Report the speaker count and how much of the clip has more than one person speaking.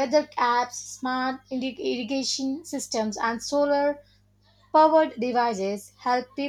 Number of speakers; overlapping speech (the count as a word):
one, no overlap